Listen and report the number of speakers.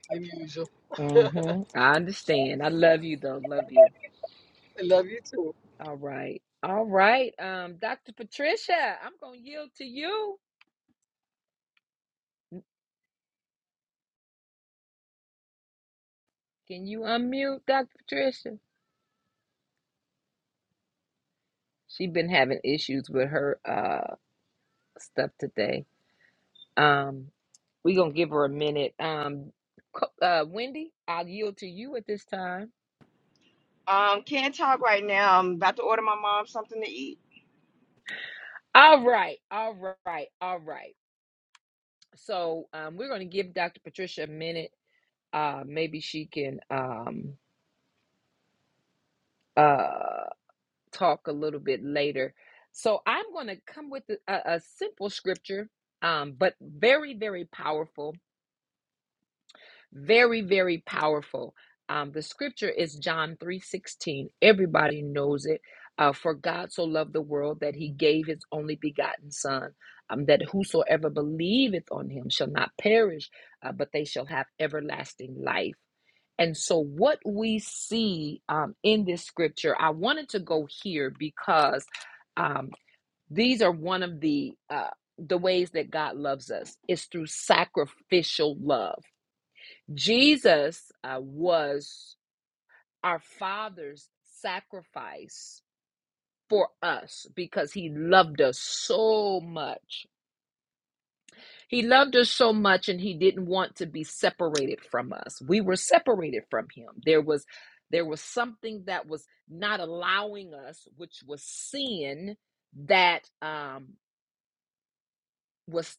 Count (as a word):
three